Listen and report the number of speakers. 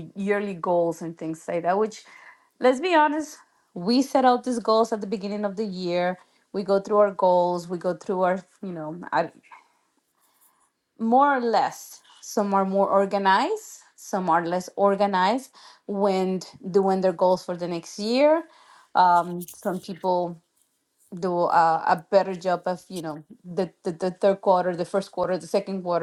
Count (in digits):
1